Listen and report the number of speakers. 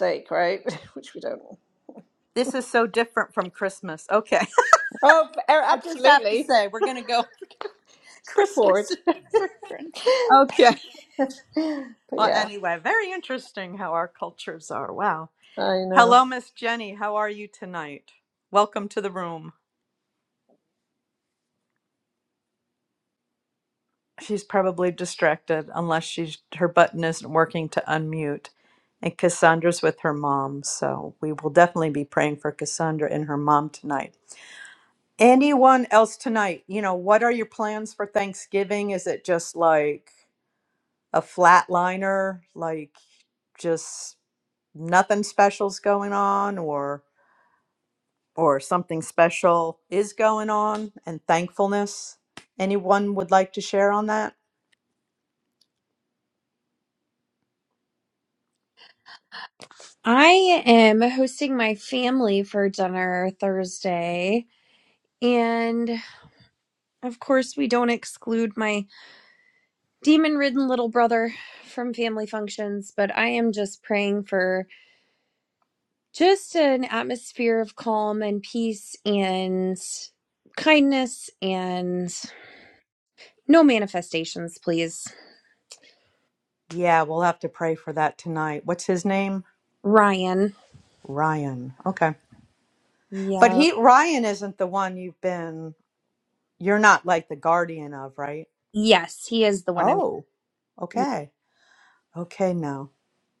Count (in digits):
3